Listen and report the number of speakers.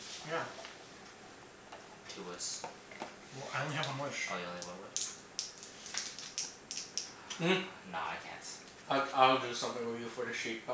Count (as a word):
three